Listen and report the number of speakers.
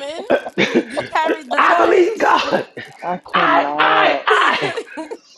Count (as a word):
three